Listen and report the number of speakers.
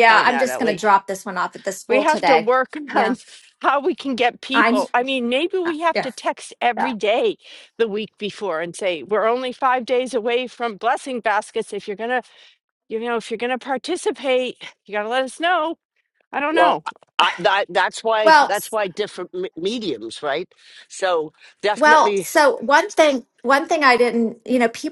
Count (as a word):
three